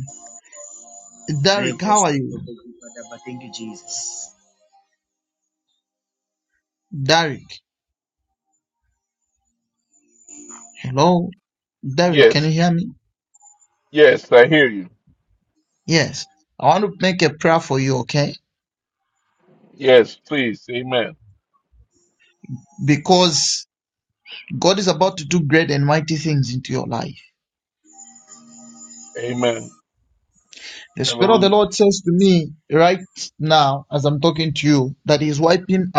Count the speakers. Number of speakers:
3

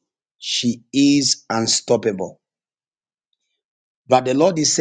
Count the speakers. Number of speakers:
1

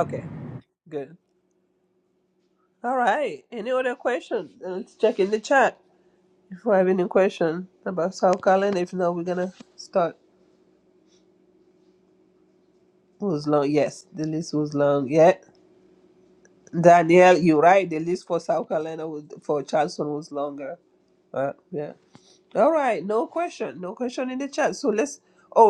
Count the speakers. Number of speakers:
1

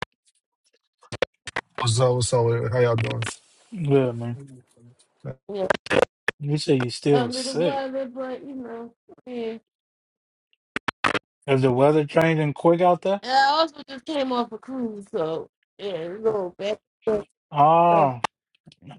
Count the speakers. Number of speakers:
3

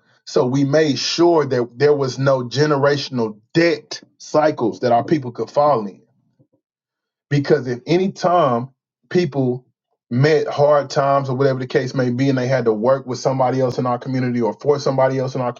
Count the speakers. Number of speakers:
1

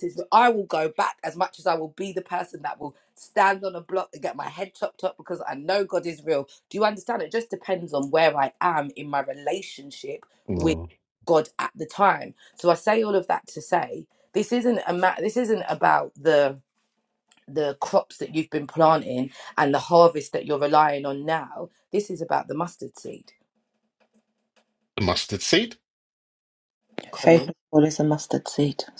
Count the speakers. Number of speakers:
3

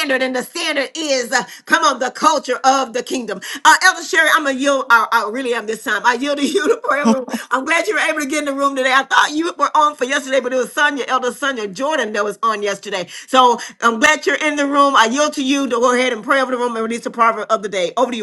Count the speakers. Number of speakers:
1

